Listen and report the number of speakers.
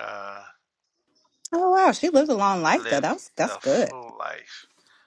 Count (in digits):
2